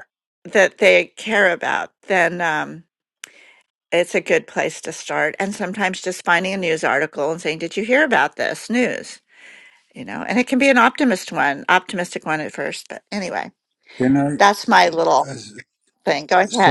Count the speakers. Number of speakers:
two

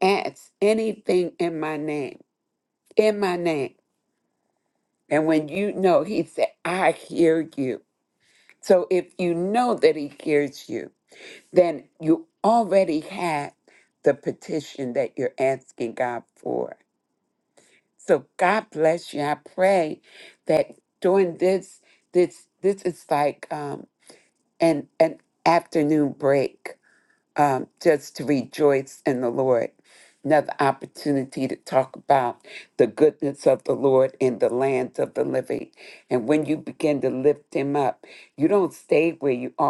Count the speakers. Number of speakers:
one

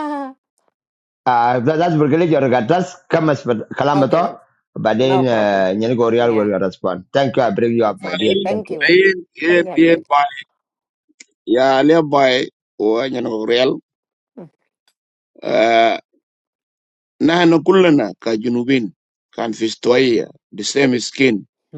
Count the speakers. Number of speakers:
three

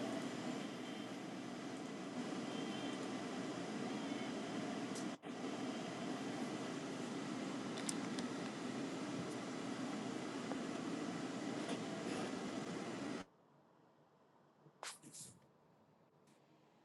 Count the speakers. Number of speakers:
zero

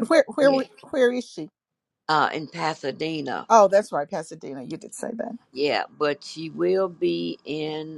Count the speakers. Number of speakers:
two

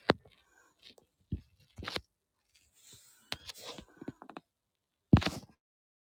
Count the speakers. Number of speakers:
zero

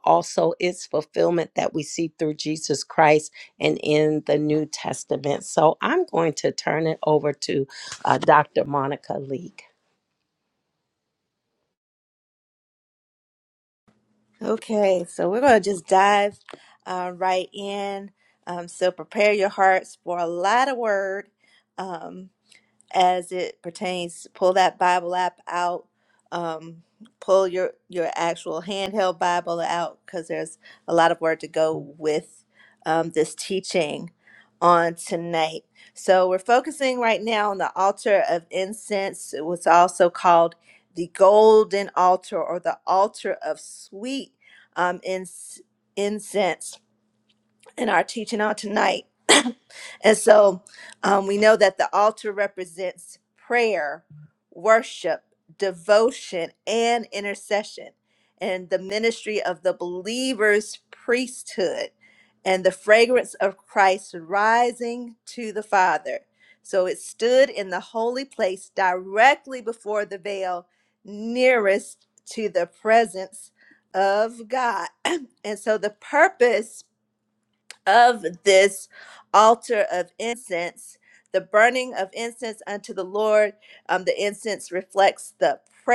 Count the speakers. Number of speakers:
two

